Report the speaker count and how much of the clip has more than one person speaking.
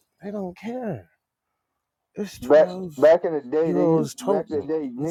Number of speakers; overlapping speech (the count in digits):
2, about 31%